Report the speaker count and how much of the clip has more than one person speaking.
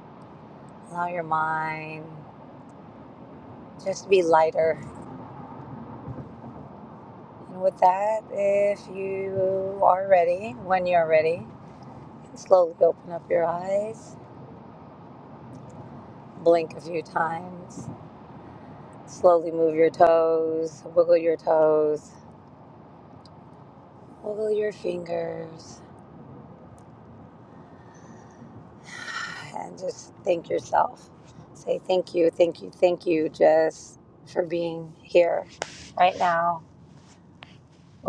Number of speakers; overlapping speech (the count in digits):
1, no overlap